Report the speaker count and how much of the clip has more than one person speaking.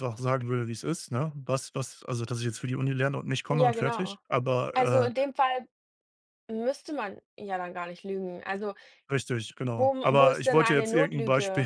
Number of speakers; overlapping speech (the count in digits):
2, about 26%